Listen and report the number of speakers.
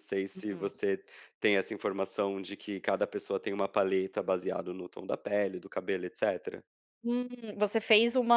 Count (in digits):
2